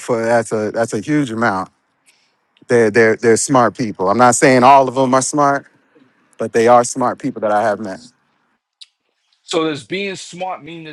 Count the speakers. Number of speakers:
two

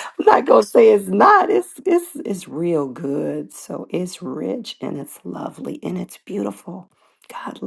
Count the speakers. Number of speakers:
one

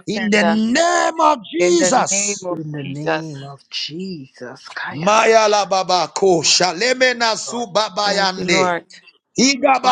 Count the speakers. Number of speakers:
three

